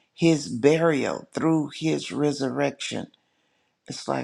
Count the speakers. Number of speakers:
1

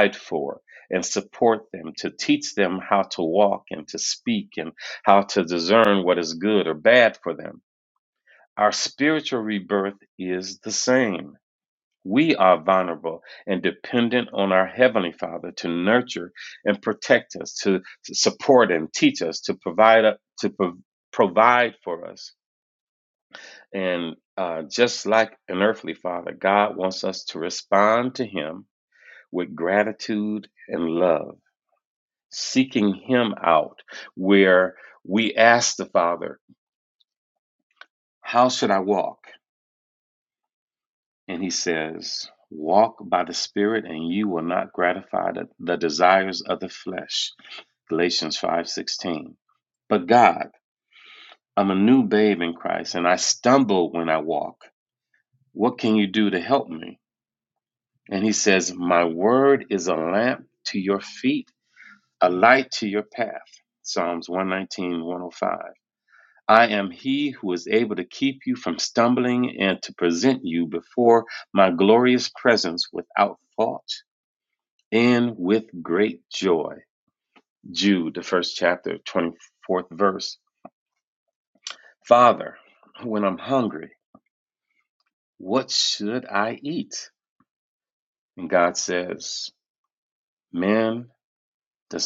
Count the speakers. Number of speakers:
1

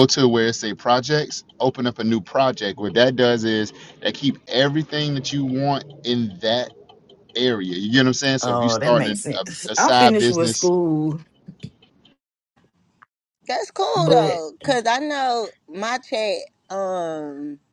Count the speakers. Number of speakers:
3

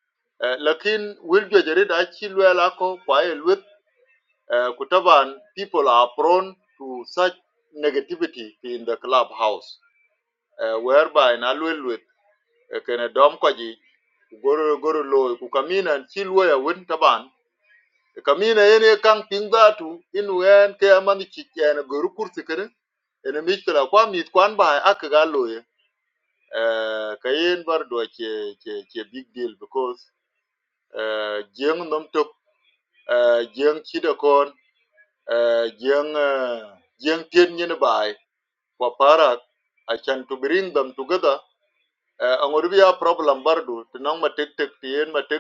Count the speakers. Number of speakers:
1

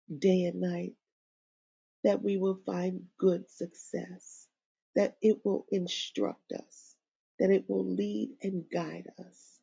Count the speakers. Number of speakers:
1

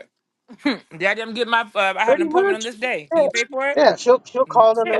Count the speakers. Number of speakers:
2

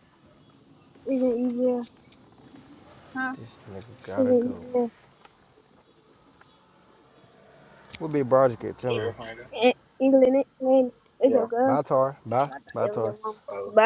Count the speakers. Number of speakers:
2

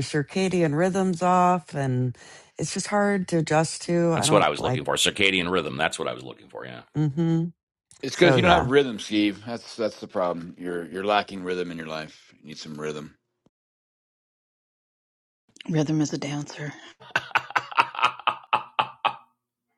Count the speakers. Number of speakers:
4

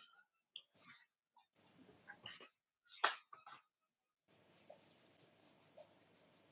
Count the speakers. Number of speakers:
0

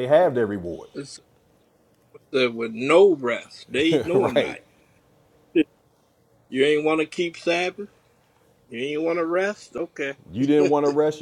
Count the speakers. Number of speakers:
2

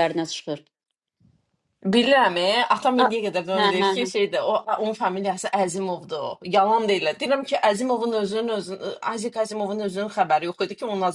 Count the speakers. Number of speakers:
2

